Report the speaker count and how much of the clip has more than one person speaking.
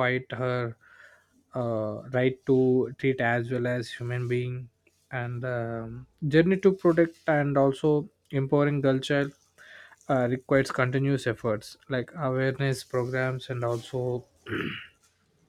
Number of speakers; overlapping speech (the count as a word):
one, no overlap